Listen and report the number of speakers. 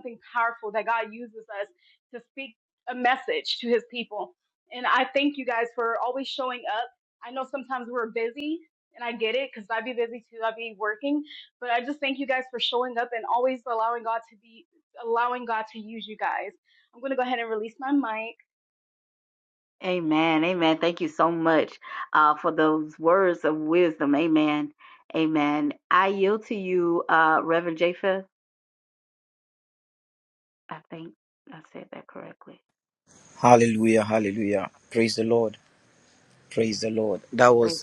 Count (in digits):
3